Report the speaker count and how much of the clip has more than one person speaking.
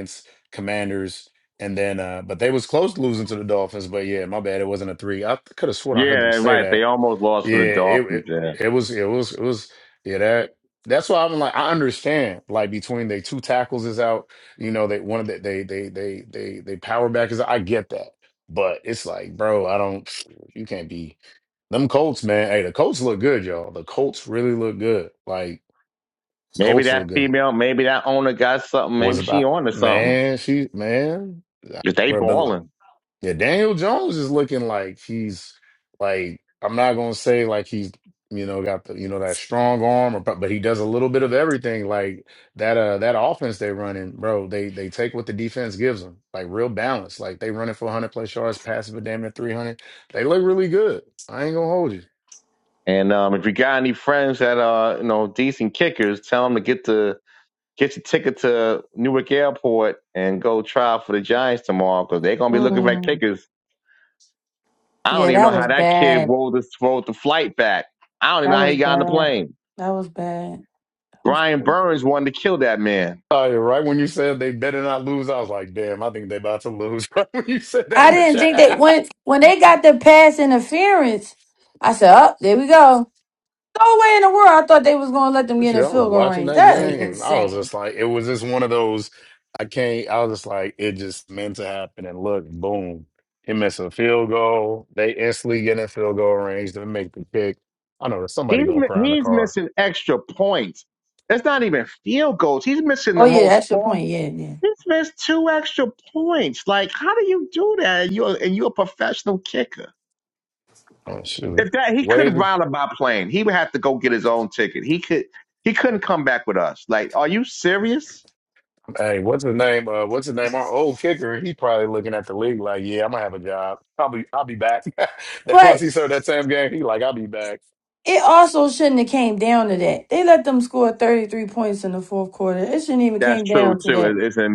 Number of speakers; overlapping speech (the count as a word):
three, about 10%